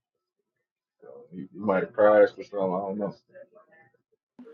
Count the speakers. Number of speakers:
1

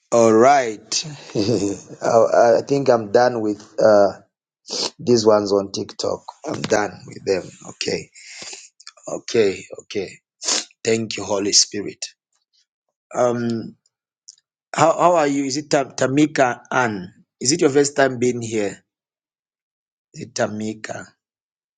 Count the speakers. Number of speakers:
1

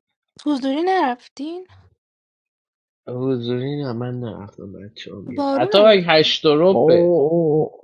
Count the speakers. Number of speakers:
3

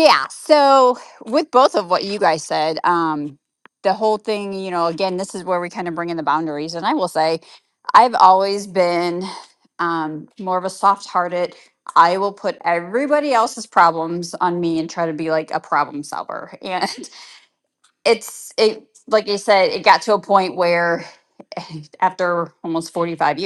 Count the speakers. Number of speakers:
1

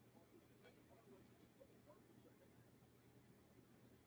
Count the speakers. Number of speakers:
0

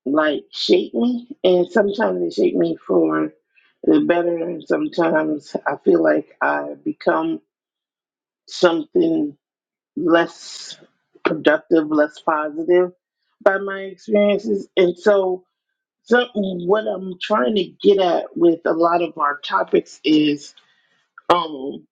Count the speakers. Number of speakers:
1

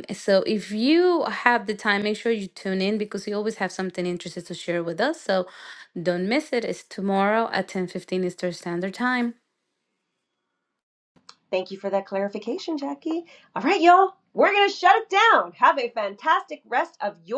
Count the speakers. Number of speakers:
2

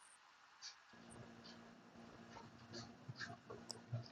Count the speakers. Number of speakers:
0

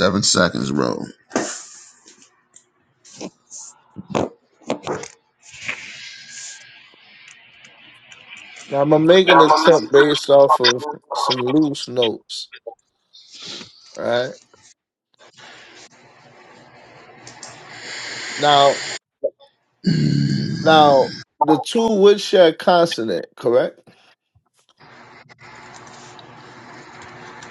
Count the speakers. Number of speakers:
2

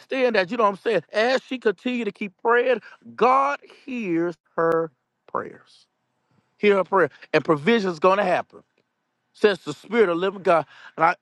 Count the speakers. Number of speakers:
1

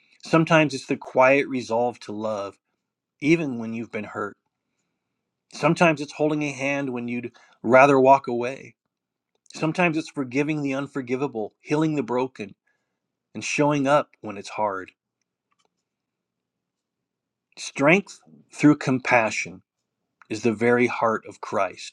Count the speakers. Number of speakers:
1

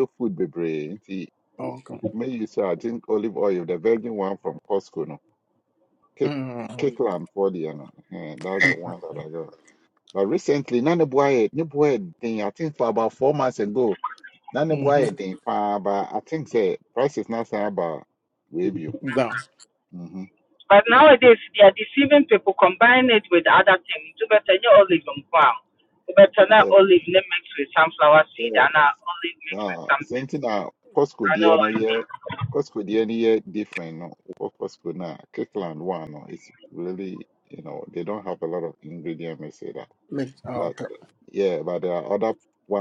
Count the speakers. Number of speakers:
3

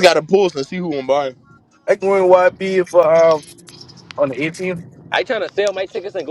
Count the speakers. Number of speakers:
3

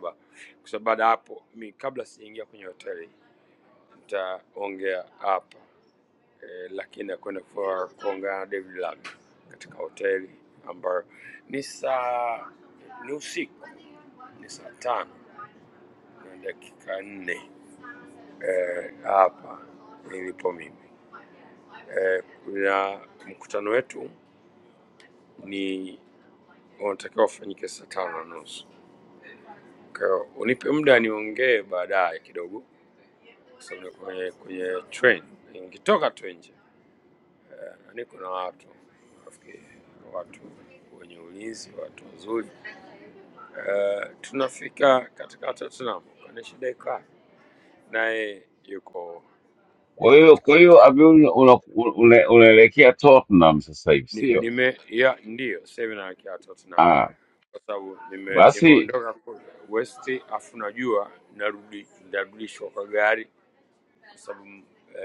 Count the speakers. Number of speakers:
2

